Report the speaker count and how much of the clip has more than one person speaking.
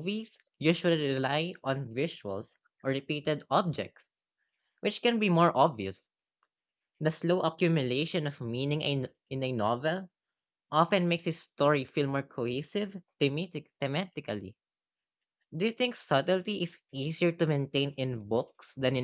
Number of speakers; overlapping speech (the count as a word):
one, no overlap